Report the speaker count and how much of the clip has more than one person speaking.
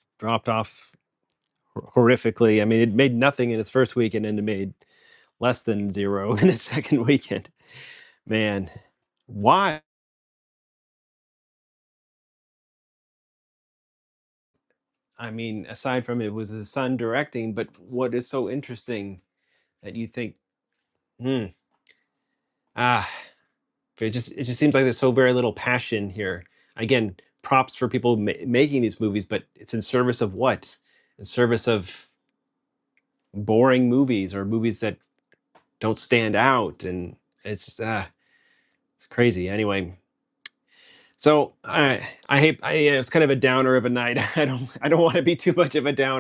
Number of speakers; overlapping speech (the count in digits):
1, no overlap